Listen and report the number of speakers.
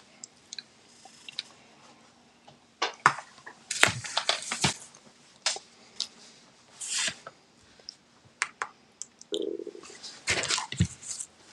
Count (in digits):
0